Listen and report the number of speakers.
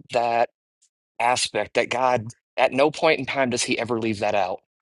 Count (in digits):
1